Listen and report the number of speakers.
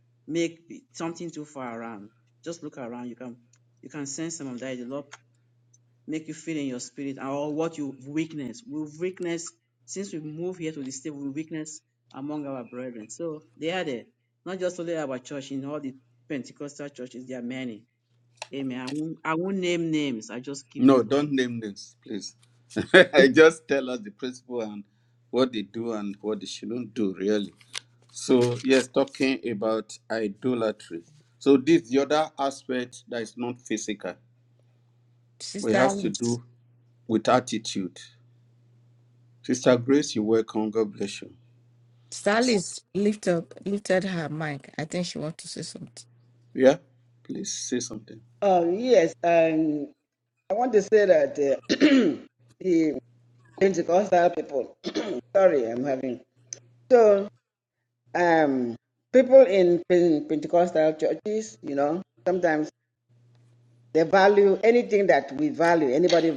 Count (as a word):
four